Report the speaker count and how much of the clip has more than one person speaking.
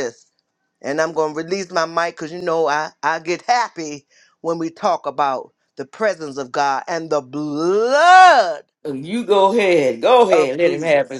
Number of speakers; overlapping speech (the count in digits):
2, about 6%